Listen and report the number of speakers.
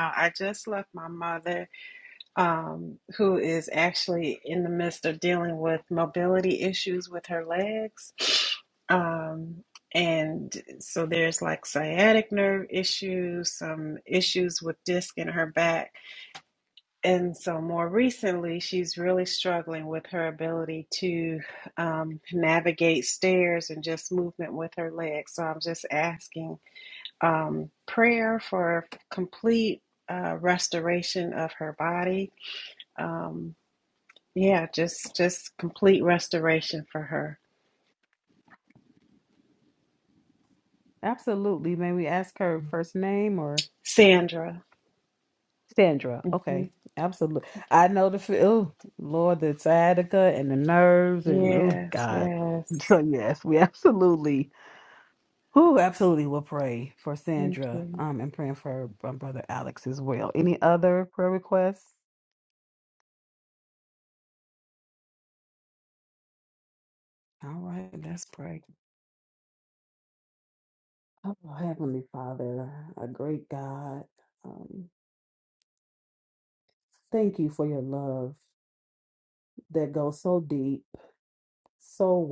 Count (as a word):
two